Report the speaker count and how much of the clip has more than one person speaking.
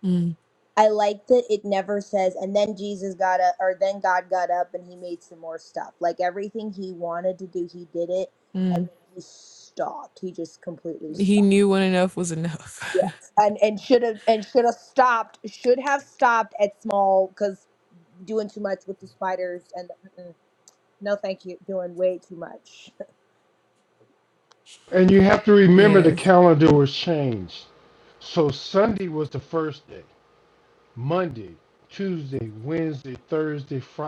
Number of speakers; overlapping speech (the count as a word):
three, about 3%